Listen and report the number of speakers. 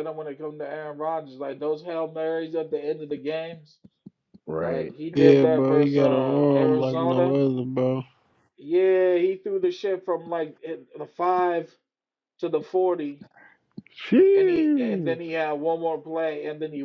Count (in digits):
3